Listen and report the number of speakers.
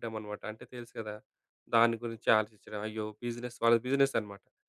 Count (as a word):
one